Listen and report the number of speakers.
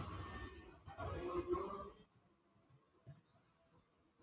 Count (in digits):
0